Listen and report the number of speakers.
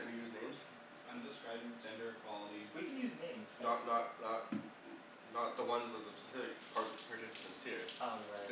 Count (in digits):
3